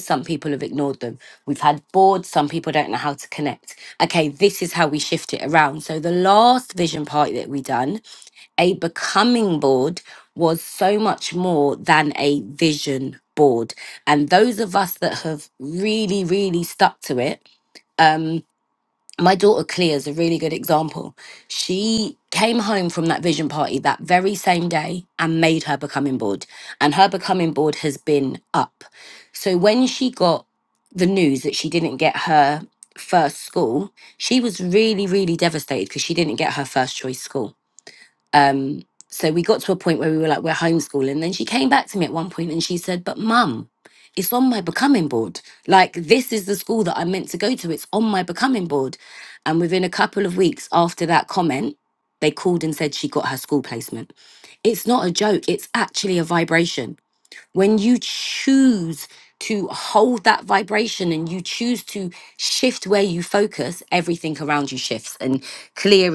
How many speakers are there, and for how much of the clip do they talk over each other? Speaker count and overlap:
1, no overlap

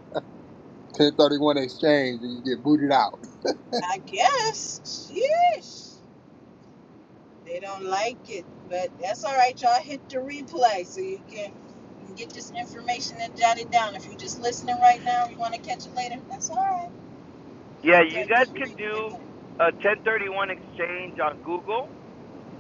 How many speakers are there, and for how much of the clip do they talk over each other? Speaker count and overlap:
3, about 6%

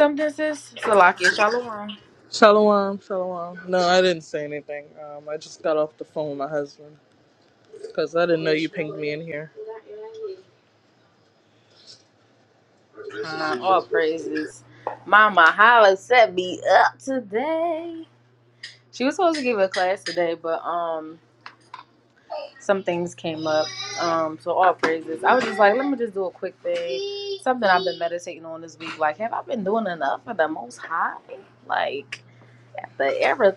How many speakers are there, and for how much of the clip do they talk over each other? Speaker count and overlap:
2, no overlap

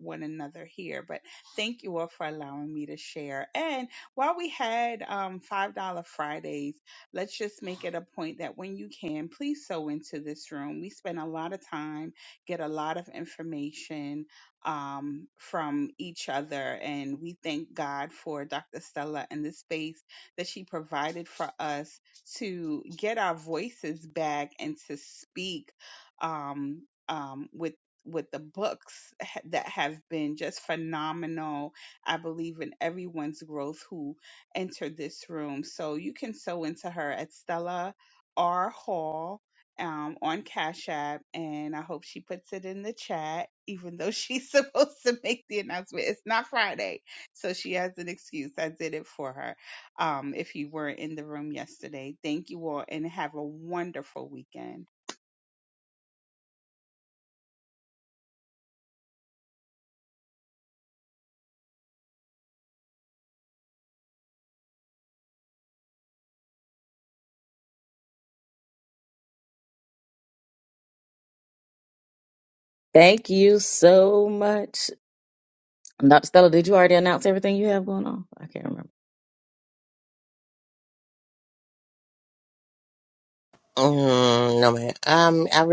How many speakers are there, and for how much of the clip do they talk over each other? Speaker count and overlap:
3, no overlap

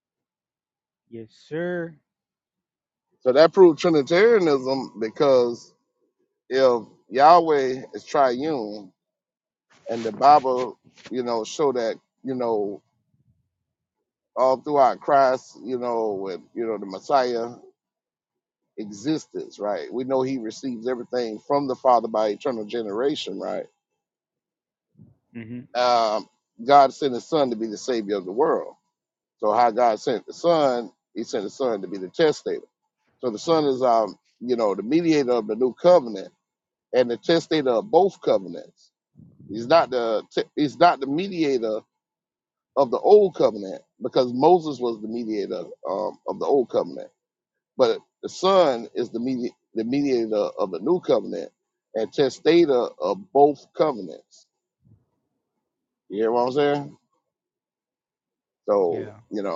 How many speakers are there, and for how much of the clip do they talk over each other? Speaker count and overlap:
2, under 1%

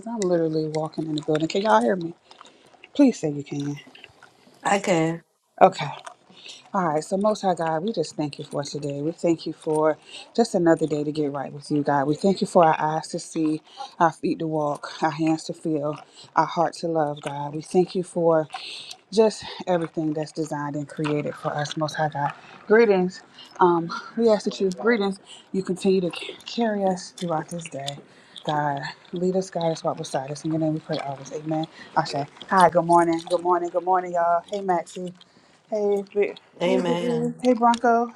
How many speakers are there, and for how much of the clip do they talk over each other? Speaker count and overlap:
2, about 2%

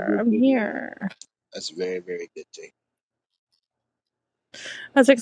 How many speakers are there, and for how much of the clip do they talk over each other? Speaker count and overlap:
2, about 15%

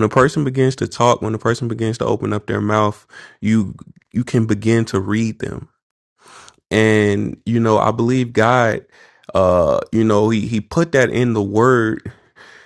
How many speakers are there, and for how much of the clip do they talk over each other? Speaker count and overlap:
1, no overlap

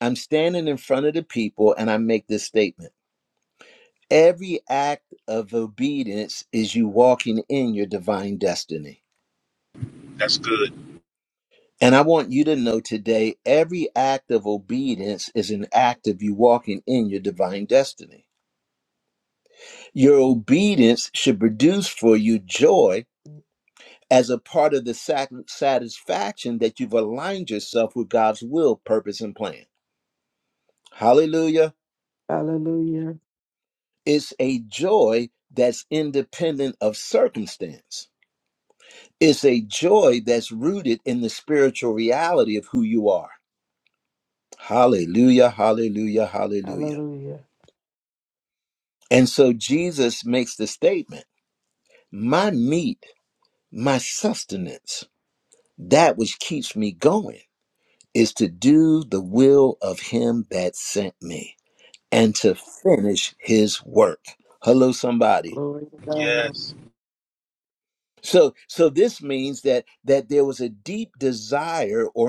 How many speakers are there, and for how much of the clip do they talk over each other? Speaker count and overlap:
3, about 1%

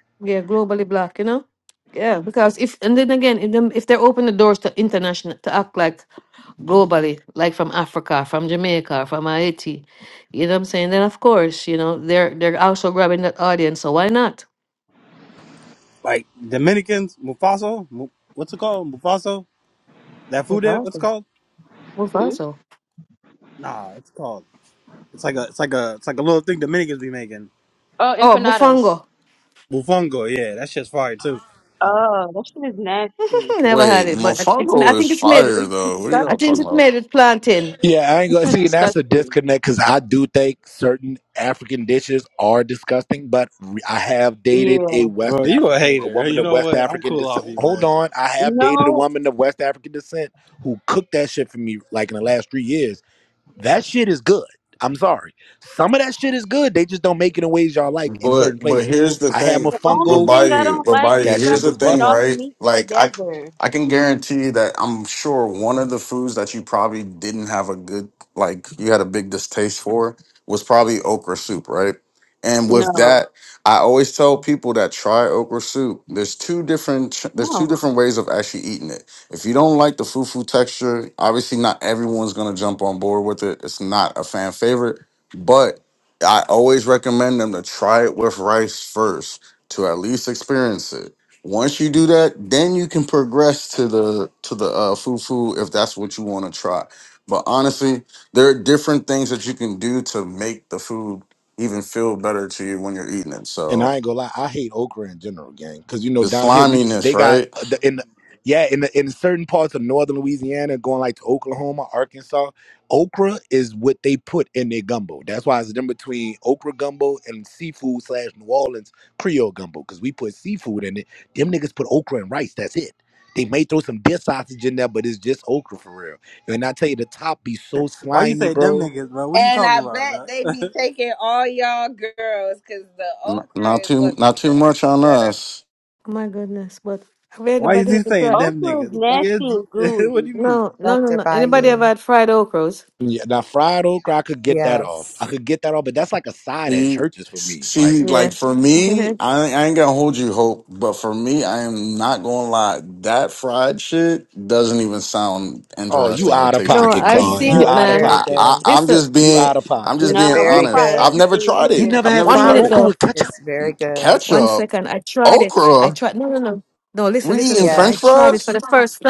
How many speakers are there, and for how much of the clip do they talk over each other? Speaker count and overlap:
7, about 21%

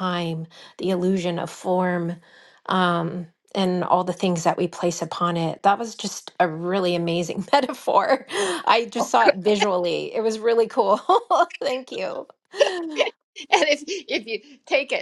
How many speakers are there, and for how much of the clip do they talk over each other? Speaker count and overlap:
2, about 1%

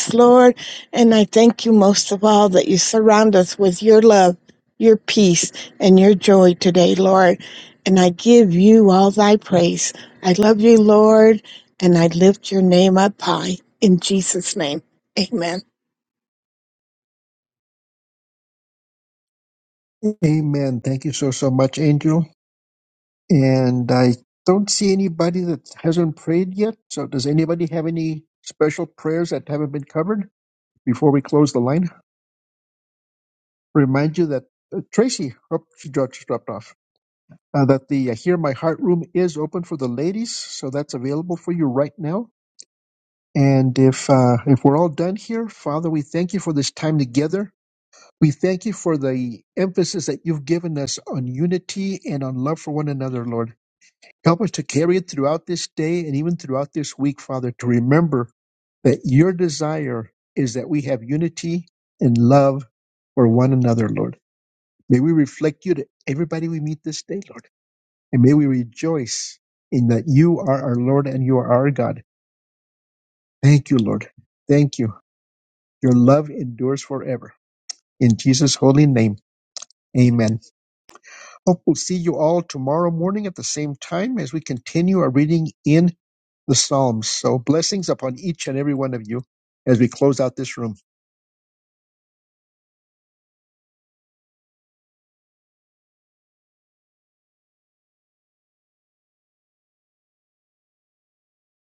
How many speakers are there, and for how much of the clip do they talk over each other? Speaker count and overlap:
2, no overlap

